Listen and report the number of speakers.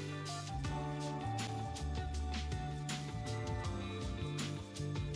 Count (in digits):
0